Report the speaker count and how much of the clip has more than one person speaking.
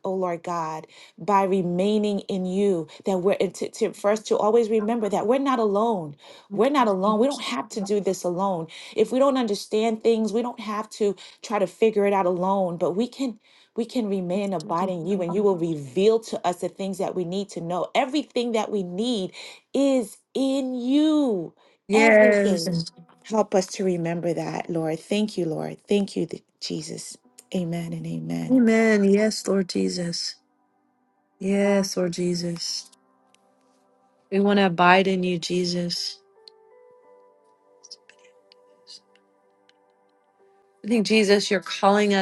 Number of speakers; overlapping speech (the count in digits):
2, about 2%